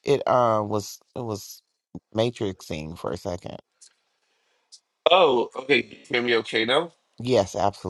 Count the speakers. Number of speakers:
two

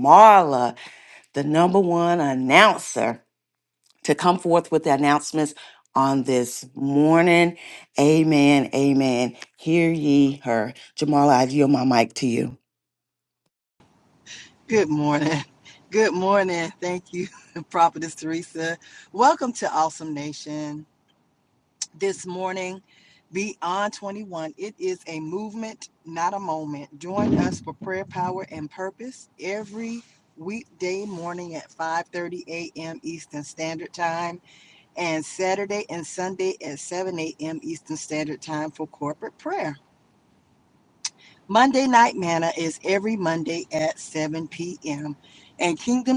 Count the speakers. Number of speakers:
two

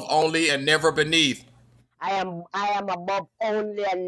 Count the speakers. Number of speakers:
two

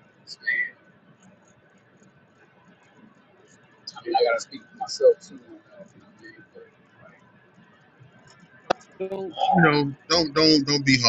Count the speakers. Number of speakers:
two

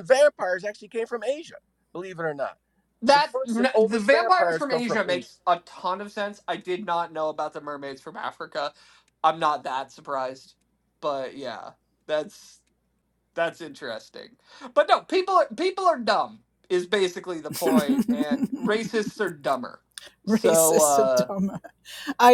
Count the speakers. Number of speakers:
three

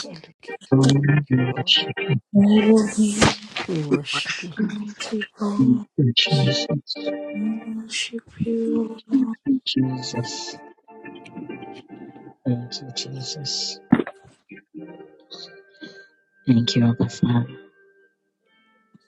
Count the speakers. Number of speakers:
three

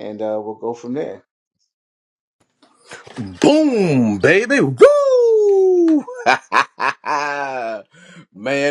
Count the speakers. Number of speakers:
two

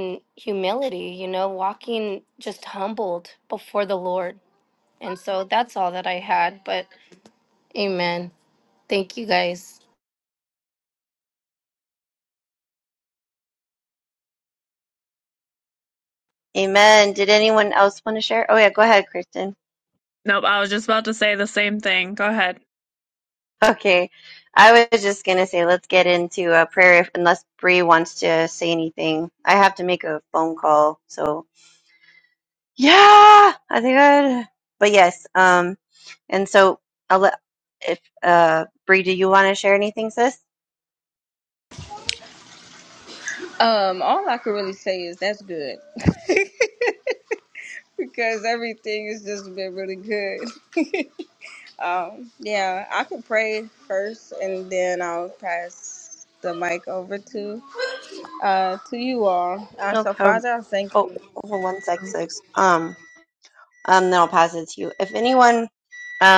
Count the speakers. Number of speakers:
four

